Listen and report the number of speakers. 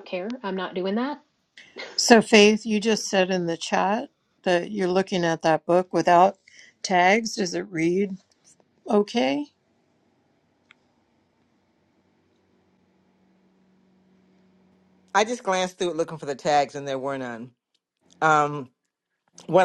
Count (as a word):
three